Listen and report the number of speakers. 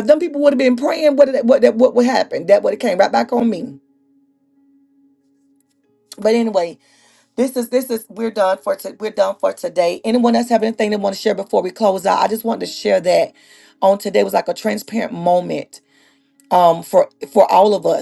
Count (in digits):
1